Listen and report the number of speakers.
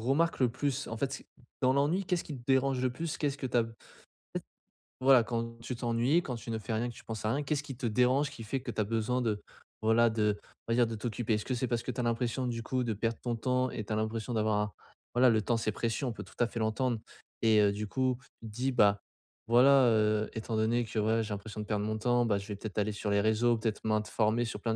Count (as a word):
one